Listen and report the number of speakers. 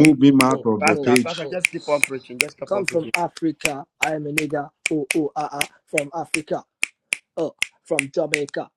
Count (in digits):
3